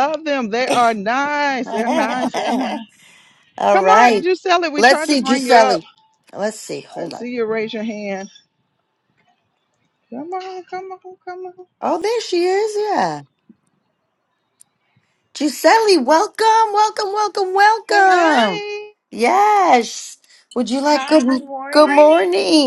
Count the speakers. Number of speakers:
three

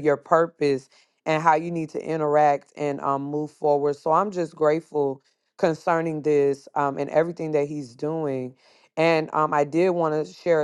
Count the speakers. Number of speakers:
one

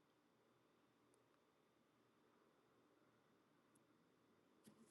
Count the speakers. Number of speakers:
zero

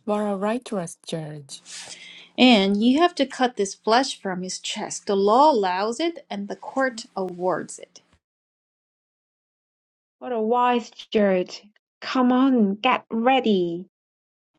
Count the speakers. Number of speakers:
three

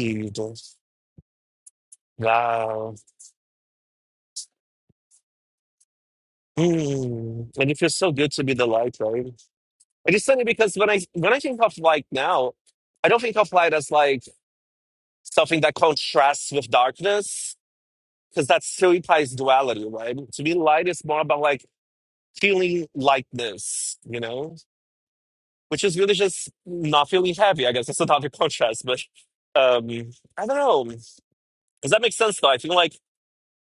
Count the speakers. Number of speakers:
one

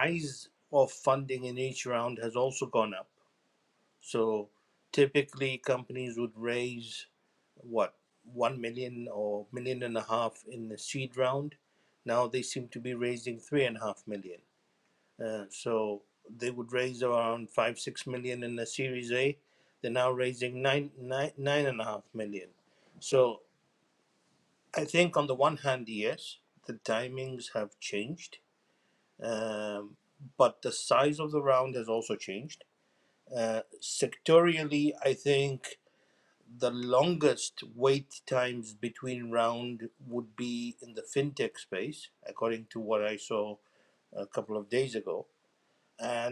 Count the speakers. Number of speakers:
one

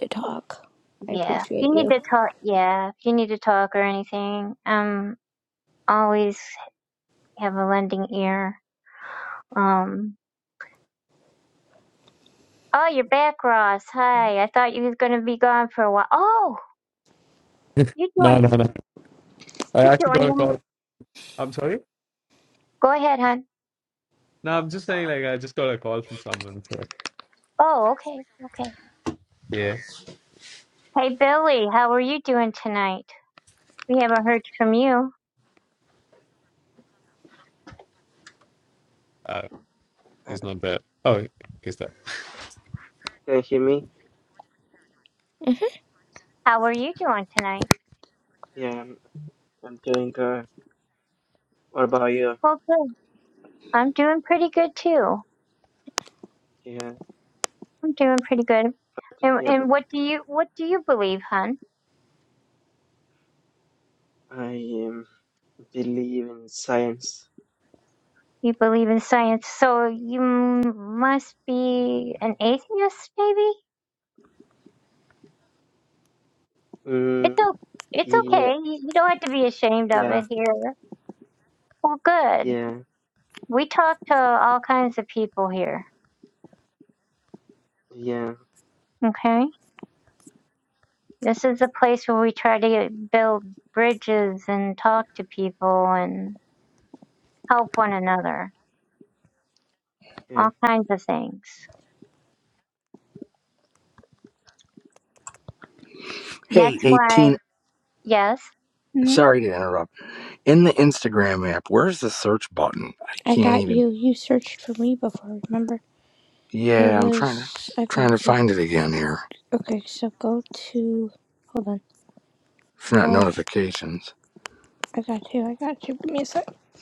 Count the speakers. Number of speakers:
five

